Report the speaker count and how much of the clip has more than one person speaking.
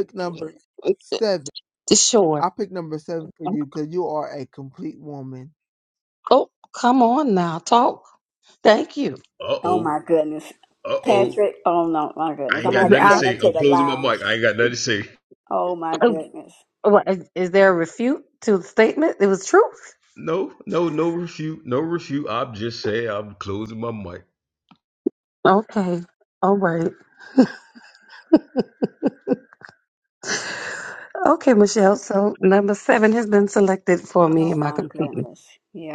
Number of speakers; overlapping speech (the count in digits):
4, about 10%